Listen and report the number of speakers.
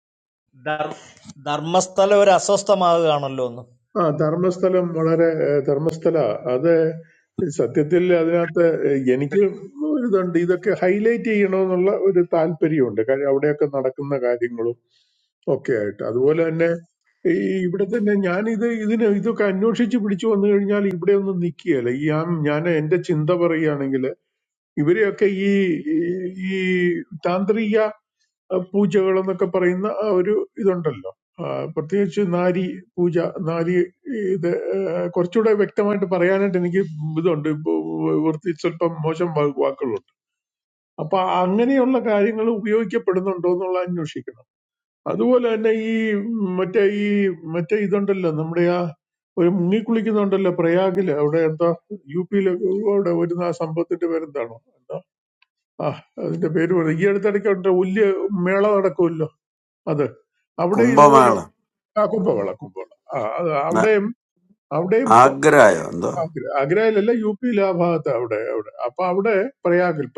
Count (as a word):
three